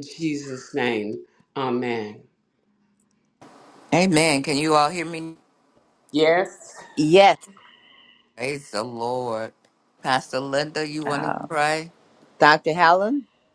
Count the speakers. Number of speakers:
3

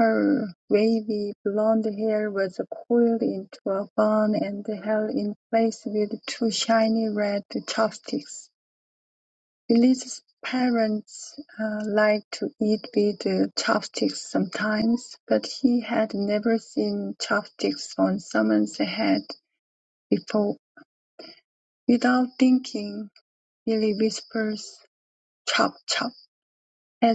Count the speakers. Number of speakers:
1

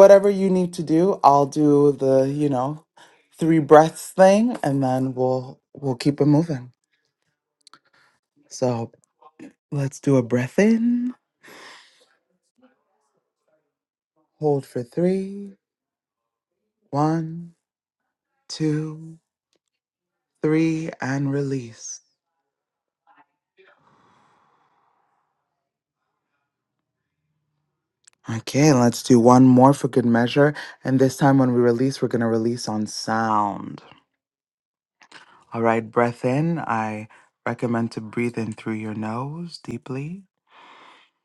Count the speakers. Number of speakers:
1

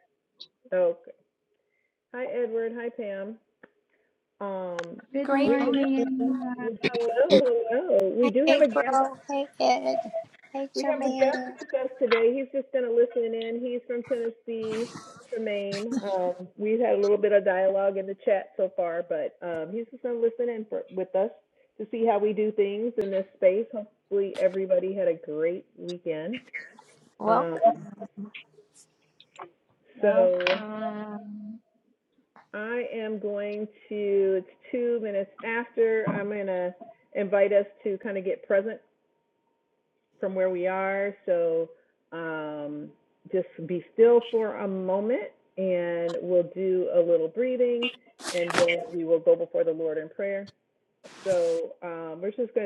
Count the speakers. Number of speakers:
3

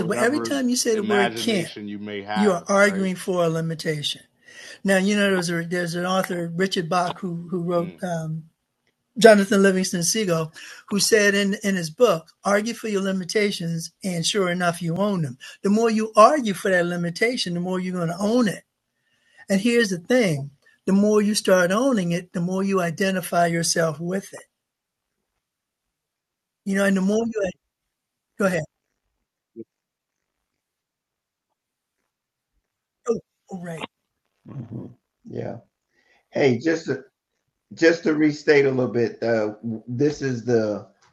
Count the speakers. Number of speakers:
3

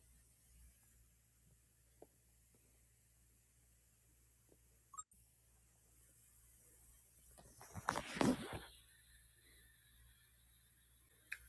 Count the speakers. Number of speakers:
0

